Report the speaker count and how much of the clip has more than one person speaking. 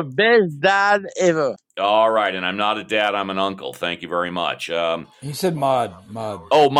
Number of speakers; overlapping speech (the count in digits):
3, about 1%